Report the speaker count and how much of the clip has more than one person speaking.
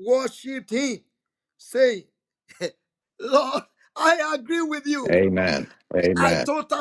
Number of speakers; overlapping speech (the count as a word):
two, about 6%